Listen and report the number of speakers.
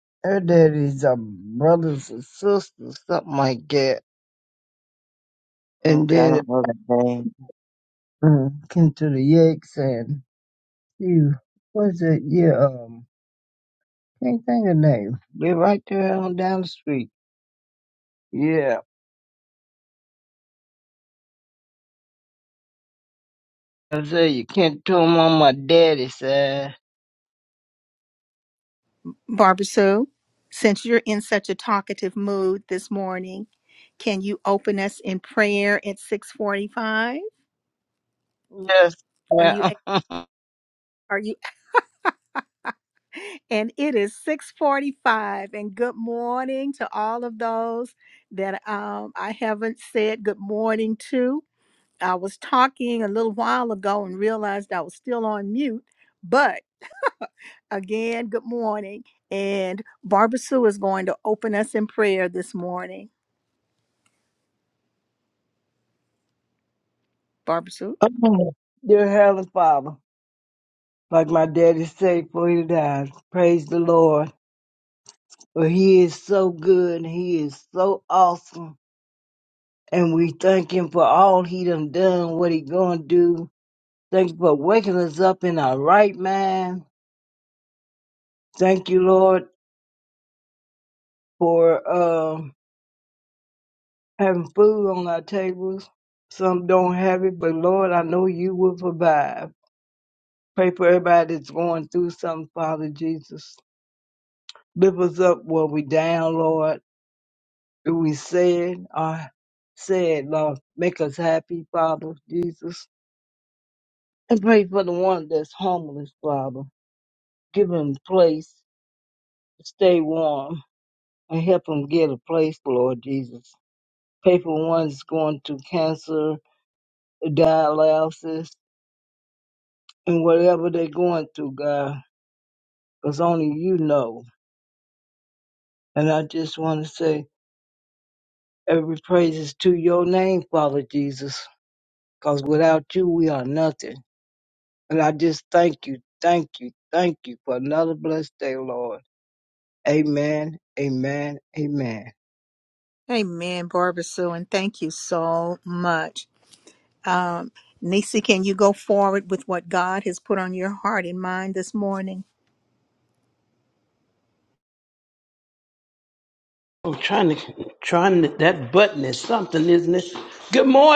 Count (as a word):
four